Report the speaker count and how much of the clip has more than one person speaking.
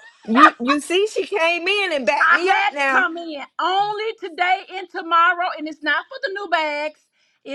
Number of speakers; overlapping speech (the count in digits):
2, about 11%